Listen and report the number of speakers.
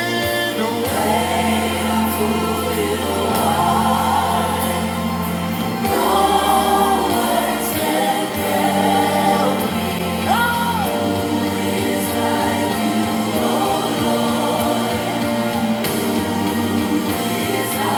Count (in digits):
0